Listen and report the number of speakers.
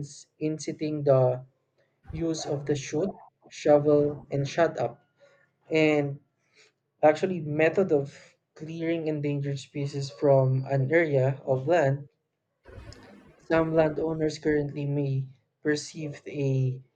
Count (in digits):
1